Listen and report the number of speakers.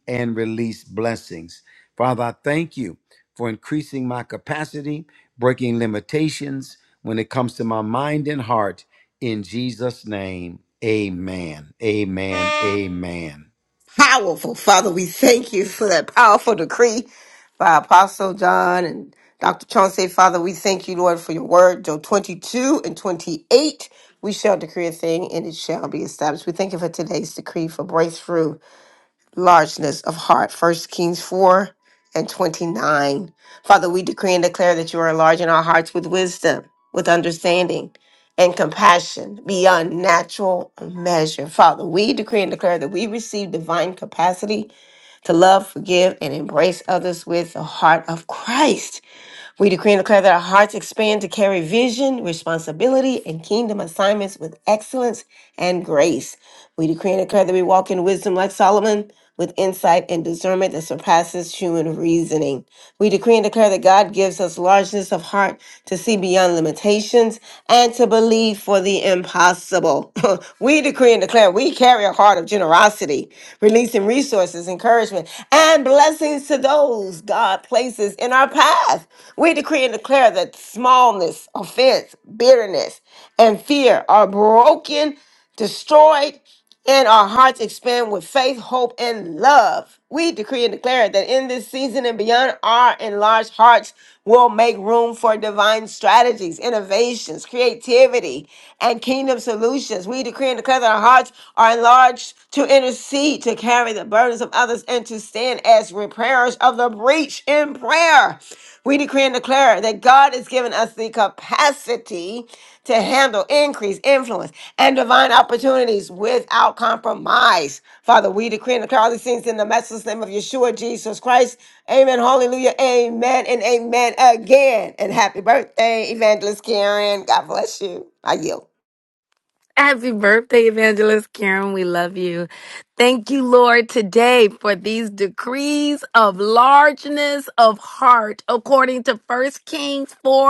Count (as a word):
three